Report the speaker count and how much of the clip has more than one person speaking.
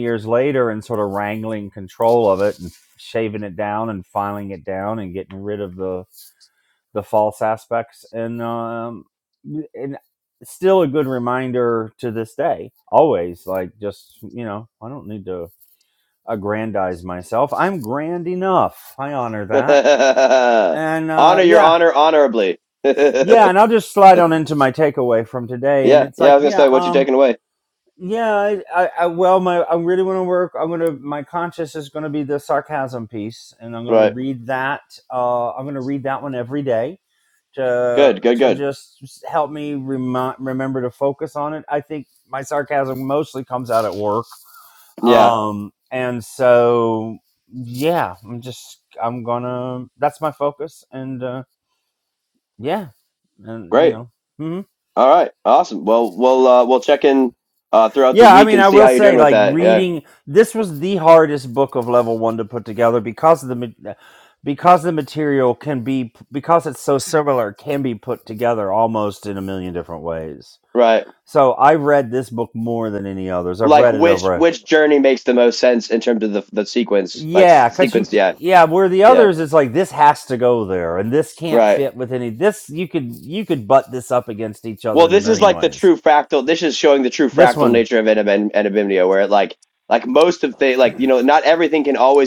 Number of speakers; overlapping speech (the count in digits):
2, about 10%